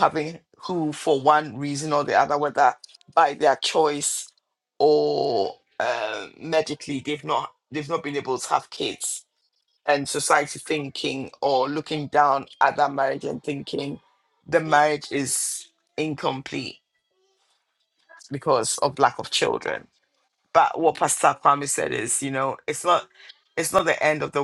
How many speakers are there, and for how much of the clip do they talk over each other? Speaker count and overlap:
1, no overlap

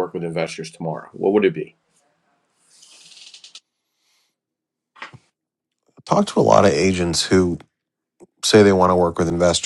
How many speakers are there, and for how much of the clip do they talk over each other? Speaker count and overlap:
2, no overlap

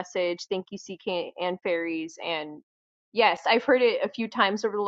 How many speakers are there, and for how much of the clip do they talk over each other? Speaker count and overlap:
1, no overlap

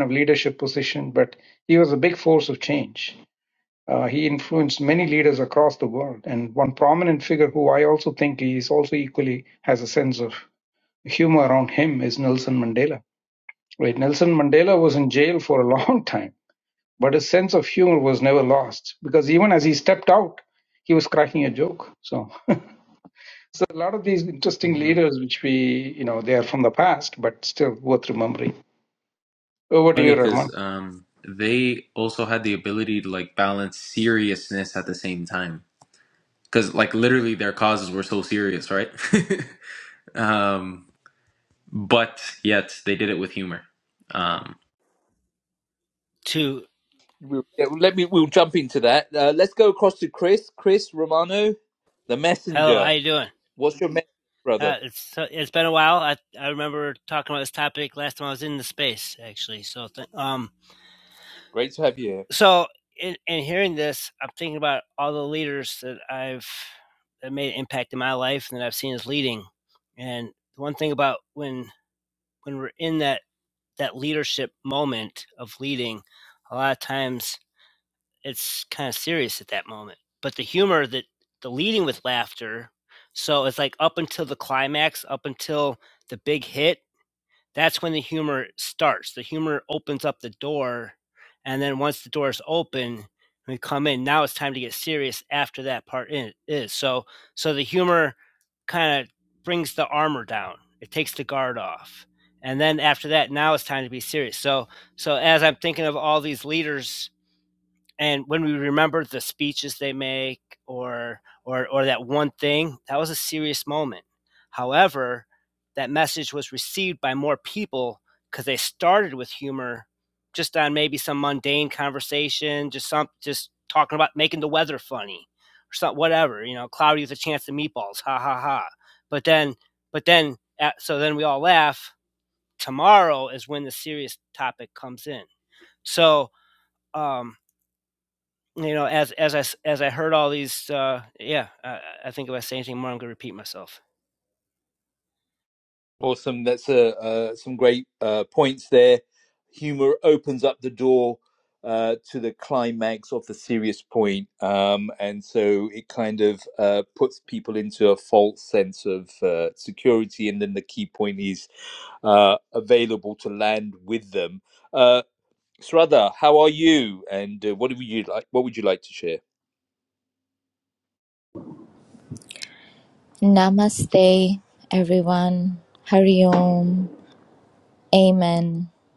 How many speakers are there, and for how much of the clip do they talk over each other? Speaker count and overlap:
5, about 1%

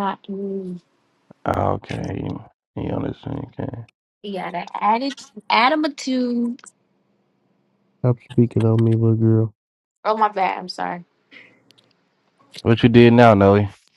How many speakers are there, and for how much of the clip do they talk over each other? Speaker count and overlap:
3, no overlap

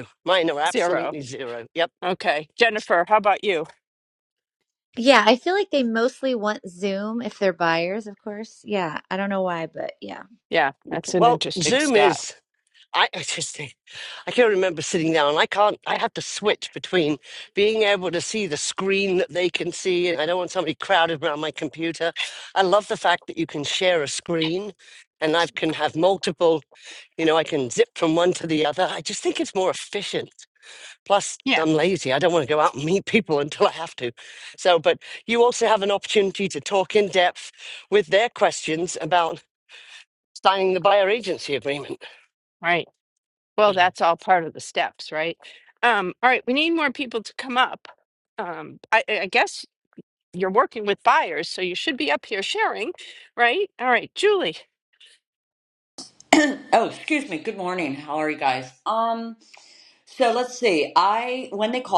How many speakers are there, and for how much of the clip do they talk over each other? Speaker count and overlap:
4, about 3%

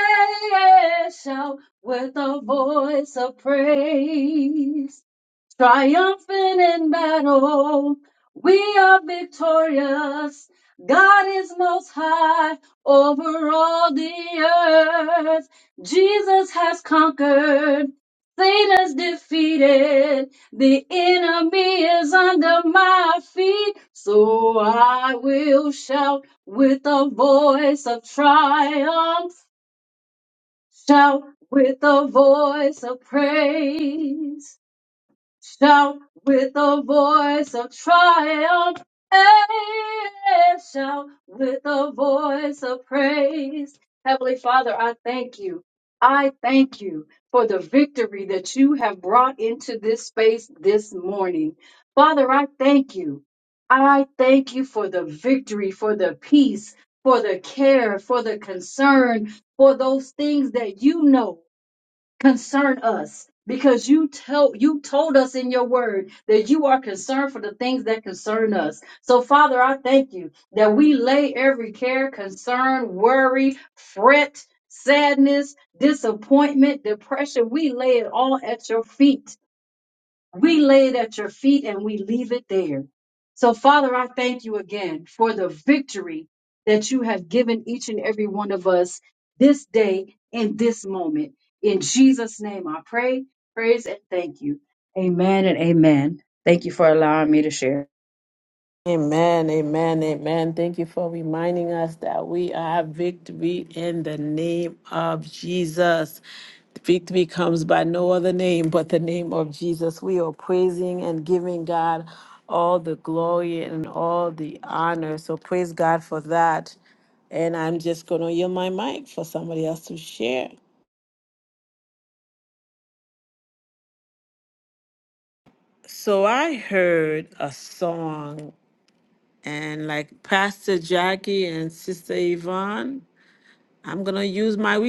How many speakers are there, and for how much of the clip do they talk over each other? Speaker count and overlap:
2, no overlap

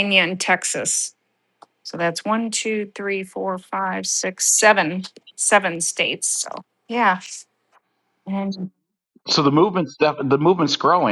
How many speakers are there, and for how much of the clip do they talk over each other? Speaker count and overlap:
2, no overlap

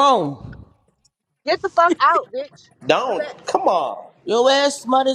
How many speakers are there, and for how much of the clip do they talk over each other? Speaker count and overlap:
3, about 5%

